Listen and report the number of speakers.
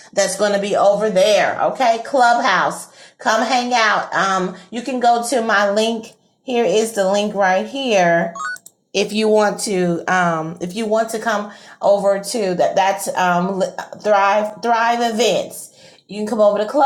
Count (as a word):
one